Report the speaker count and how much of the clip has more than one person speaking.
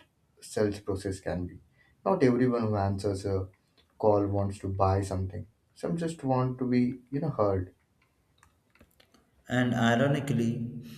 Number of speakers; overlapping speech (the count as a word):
two, no overlap